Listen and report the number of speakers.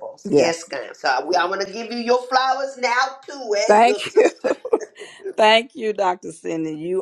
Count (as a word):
two